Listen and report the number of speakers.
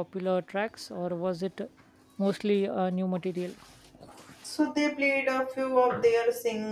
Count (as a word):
two